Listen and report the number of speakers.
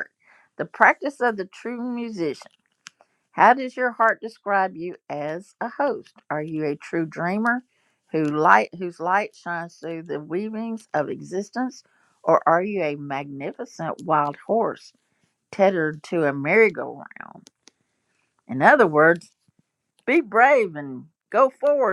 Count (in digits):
1